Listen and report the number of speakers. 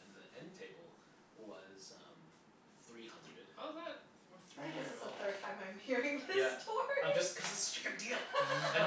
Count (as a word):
three